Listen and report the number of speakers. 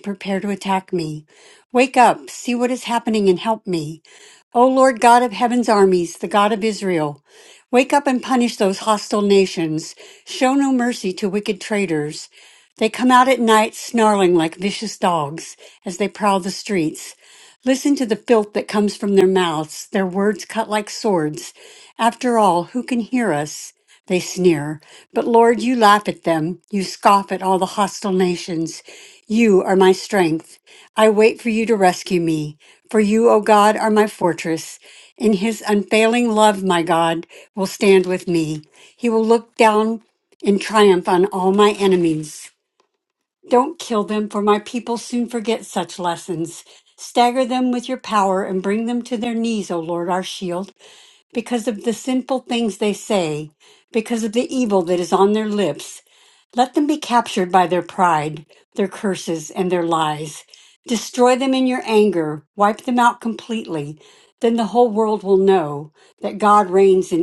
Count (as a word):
one